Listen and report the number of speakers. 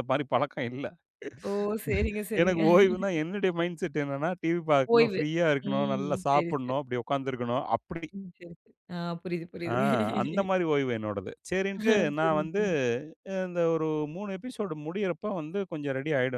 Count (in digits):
2